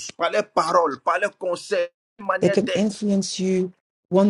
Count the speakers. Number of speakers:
2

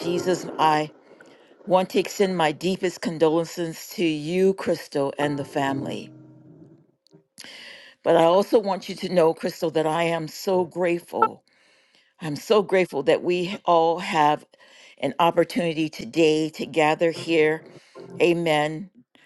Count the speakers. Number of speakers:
1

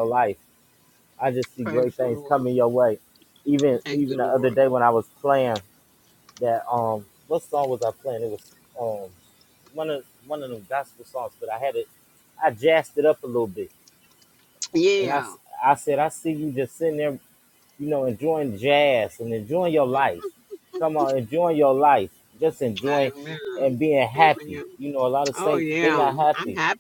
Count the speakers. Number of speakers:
2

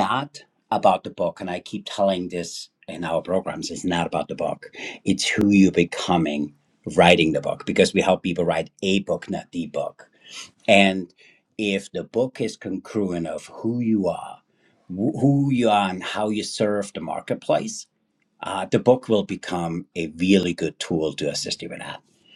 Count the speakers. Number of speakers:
1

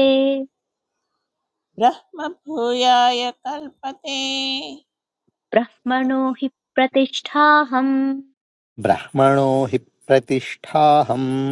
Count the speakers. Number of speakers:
3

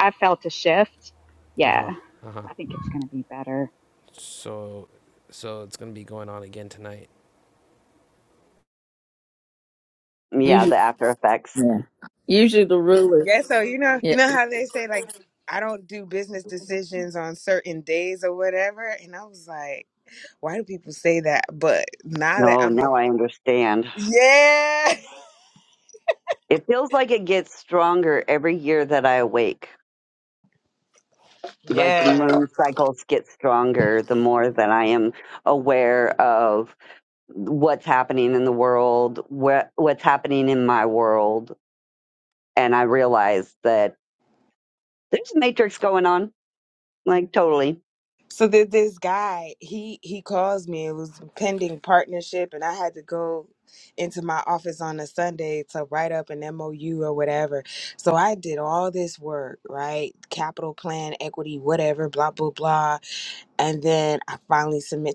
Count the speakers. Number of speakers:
5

